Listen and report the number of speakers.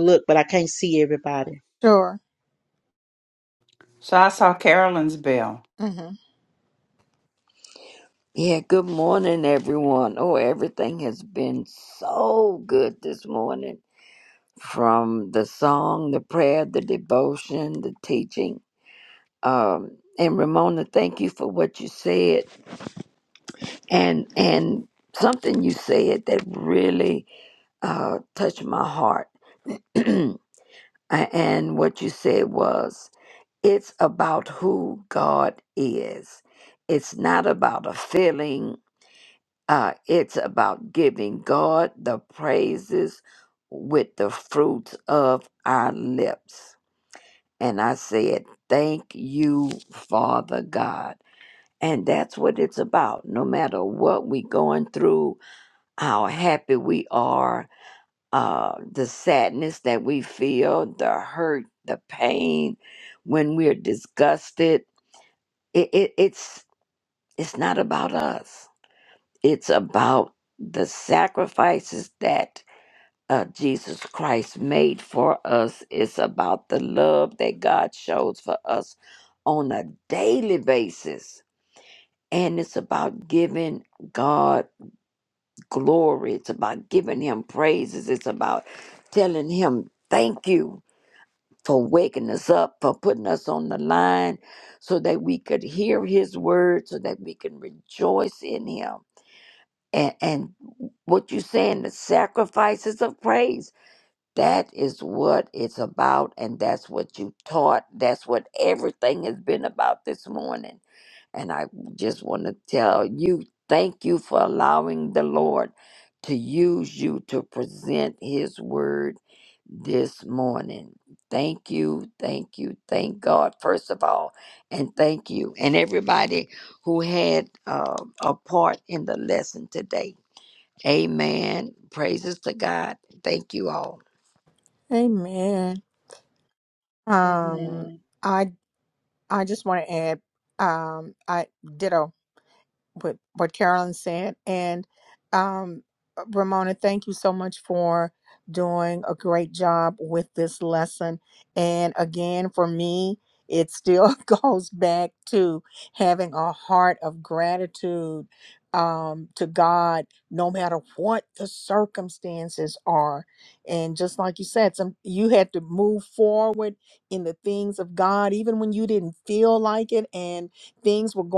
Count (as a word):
four